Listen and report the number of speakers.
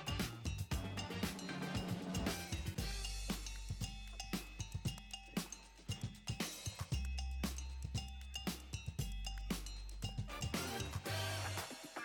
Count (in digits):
0